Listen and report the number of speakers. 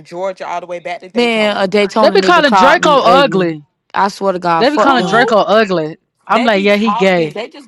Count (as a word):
three